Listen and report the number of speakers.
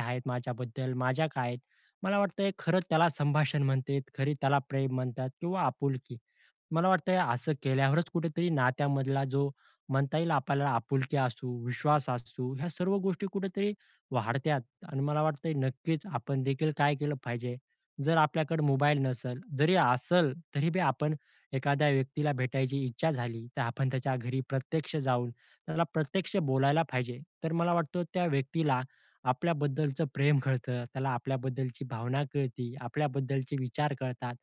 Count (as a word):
one